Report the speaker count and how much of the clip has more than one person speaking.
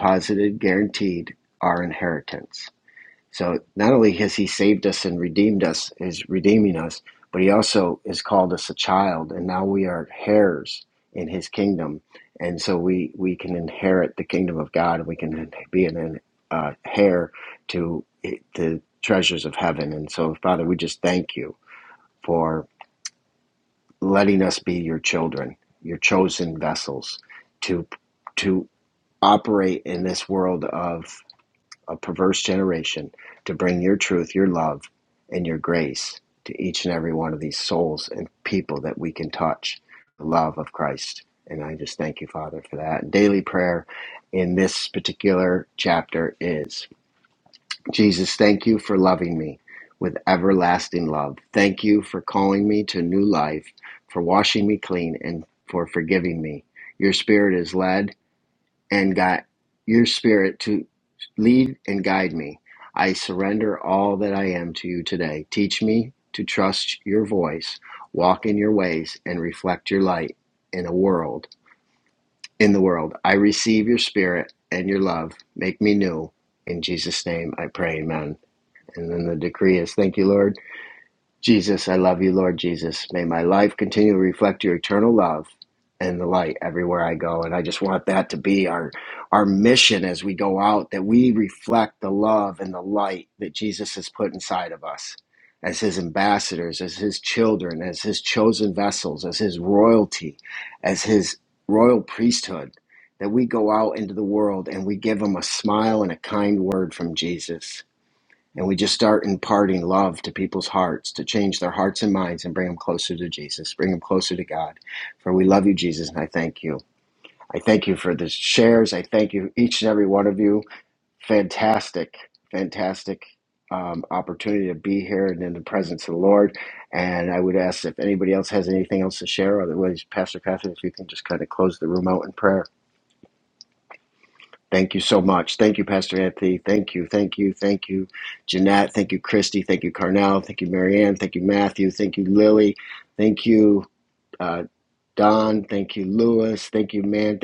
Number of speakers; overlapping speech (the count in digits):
1, no overlap